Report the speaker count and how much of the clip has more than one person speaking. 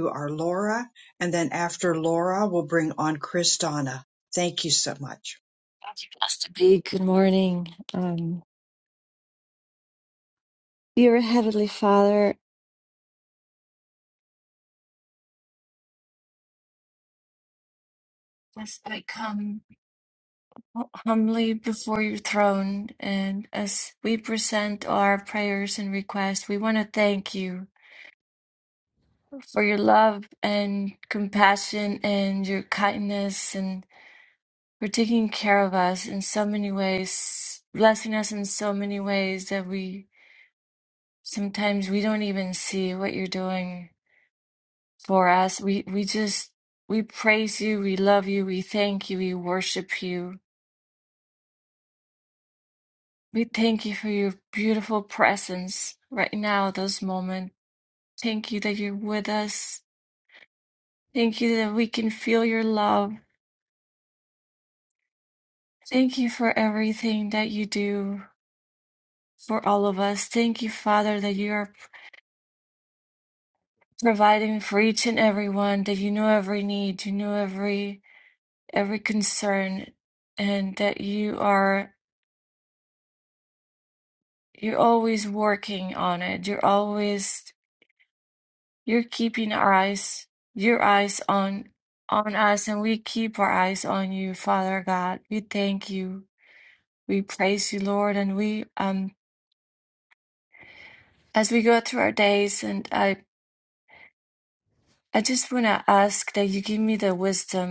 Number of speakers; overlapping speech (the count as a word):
two, no overlap